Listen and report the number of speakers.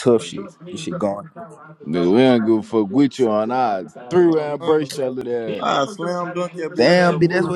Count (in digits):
3